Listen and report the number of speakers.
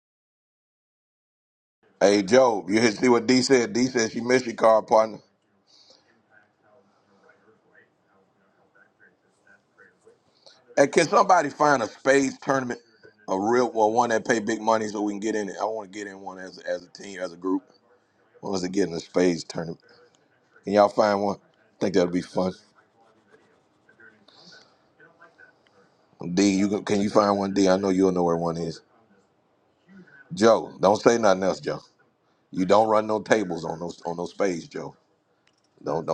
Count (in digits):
1